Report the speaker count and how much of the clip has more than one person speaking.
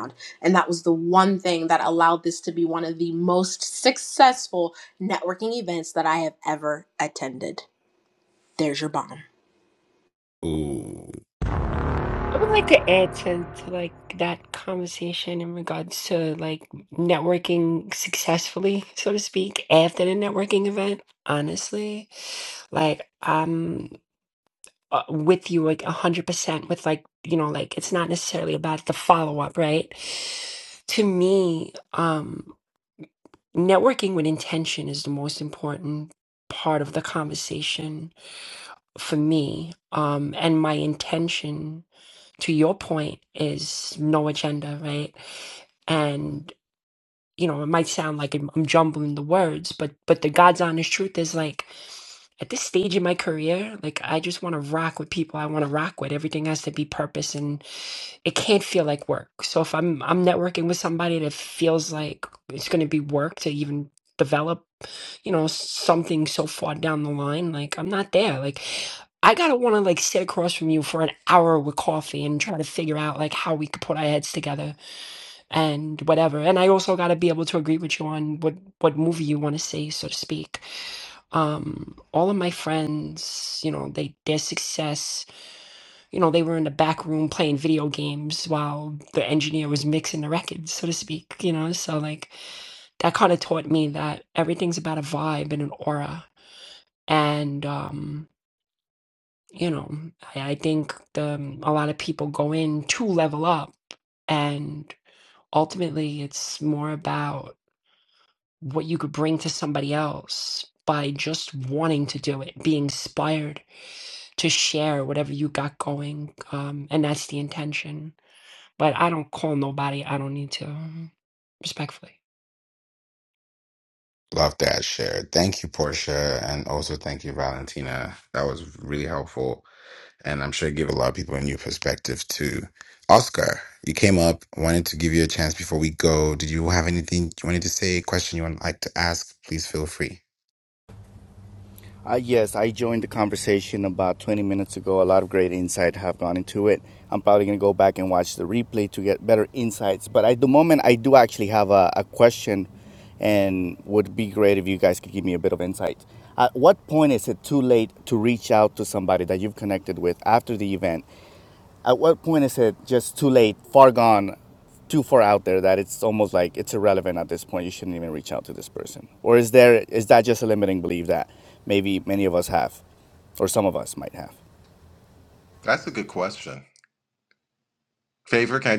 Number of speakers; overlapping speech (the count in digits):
5, no overlap